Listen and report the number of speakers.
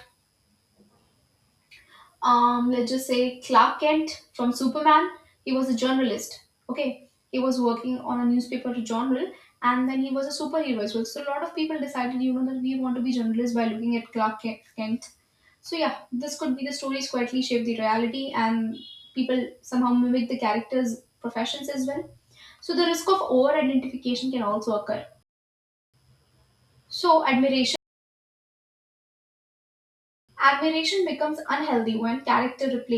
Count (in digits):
1